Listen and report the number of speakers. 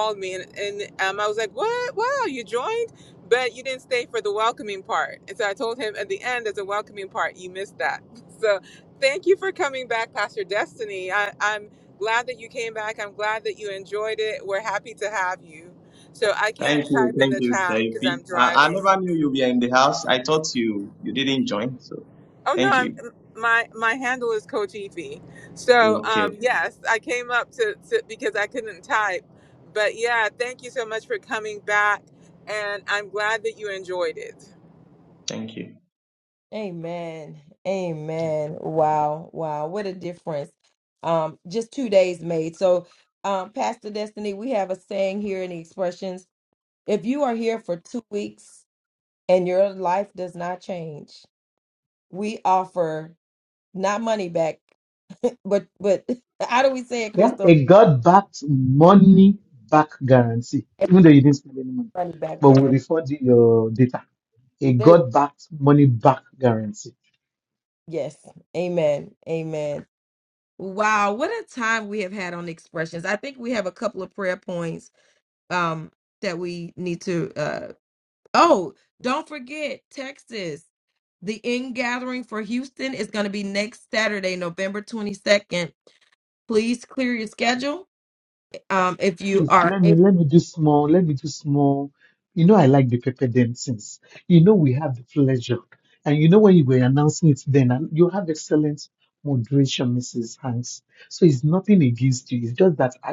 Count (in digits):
4